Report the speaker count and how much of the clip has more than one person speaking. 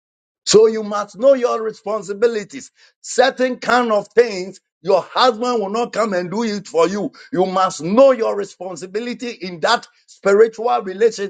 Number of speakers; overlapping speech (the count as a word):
one, no overlap